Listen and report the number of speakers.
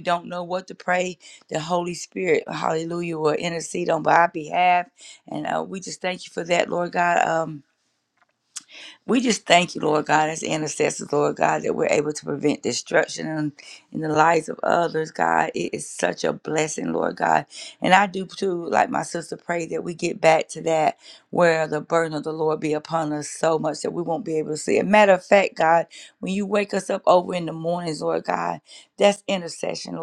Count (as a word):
one